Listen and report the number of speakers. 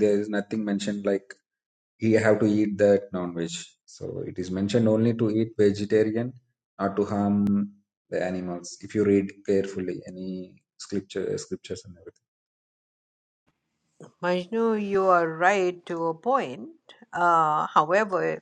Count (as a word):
two